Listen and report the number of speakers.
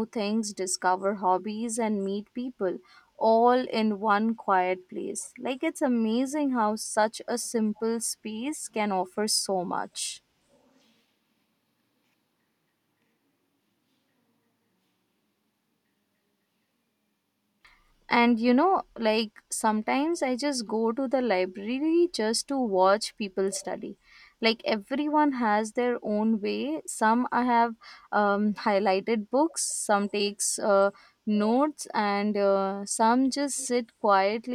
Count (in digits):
1